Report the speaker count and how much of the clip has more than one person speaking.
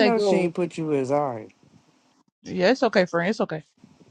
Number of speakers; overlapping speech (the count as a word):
two, about 12%